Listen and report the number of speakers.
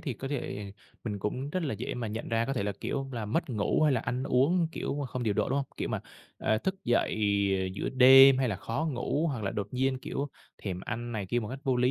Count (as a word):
one